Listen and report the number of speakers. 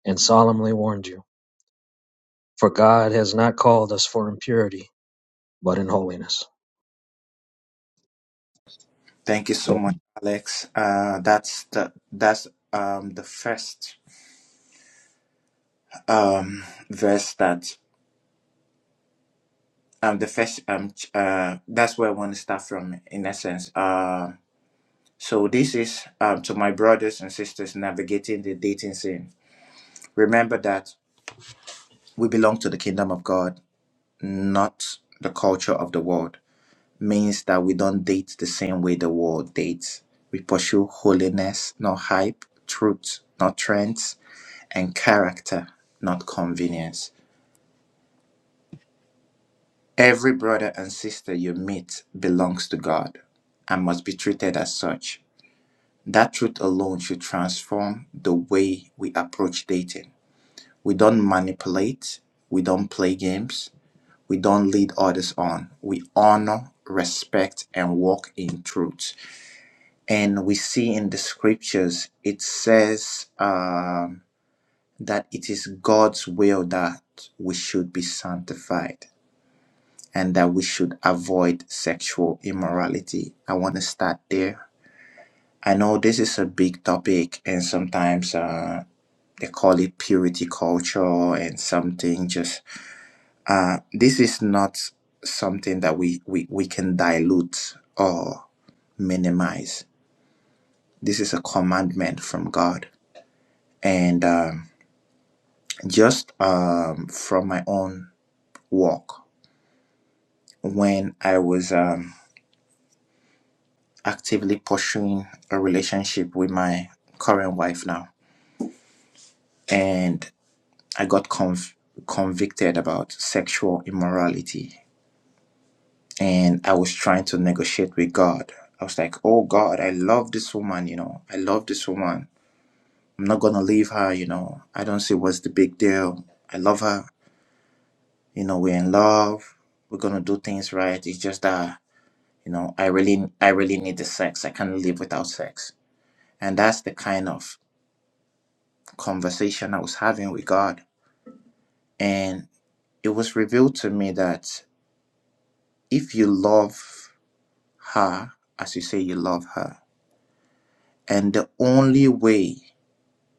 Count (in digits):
2